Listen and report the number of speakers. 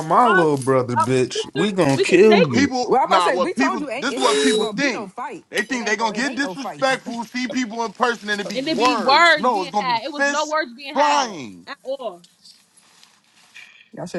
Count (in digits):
4